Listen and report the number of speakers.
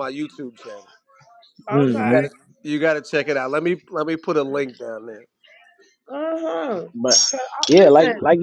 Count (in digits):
3